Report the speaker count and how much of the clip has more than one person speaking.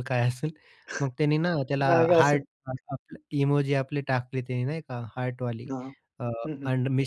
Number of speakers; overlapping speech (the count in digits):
2, about 10%